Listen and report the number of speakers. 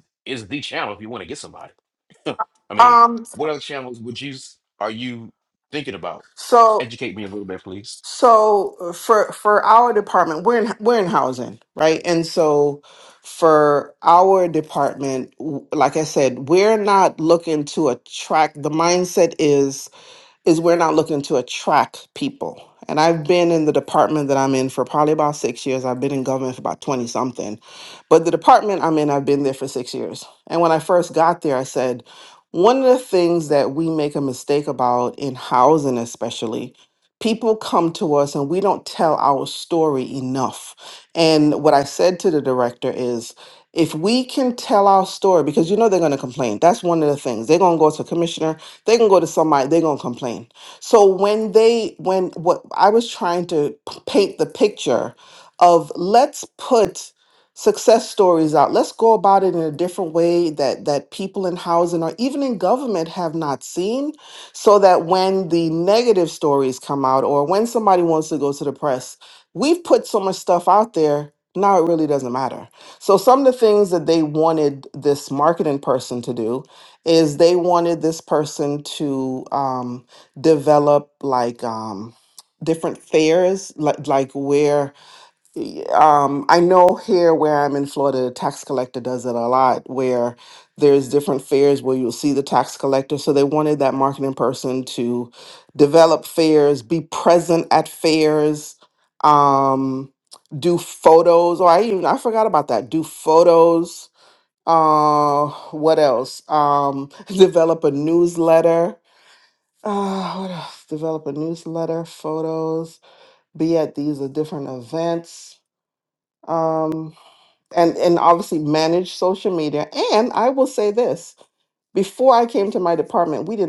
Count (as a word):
two